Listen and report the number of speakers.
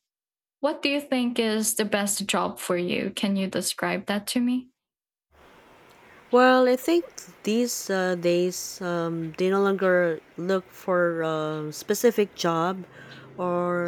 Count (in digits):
2